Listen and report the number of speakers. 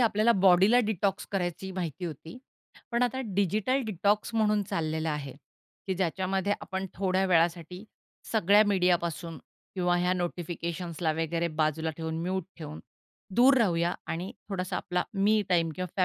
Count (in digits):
1